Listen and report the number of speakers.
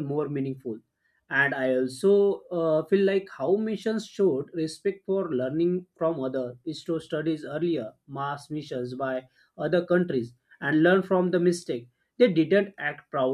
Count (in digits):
1